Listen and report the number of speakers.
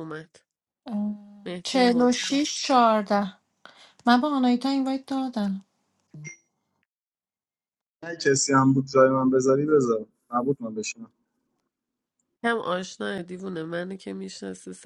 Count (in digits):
3